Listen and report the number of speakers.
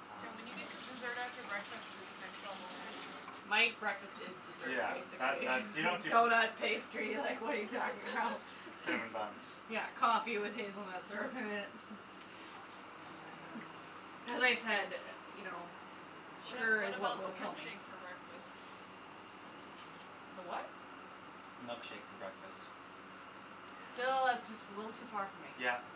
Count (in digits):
3